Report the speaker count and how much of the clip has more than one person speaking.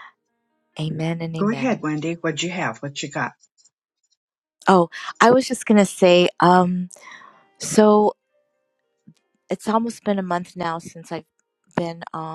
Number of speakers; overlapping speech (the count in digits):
2, about 3%